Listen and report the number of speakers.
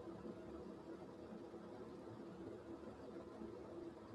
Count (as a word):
zero